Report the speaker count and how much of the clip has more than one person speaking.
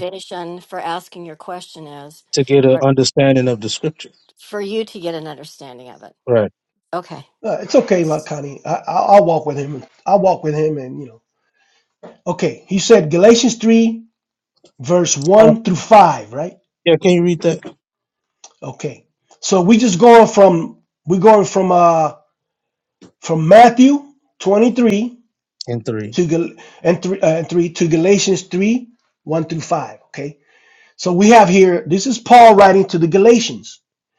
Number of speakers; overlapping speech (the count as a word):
three, about 1%